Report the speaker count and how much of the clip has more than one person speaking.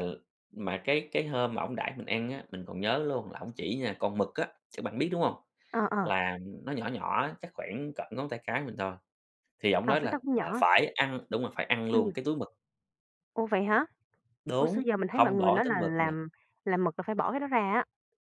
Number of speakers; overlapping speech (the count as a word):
two, about 14%